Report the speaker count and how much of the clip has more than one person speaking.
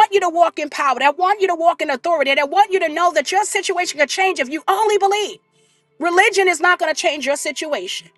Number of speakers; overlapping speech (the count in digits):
1, no overlap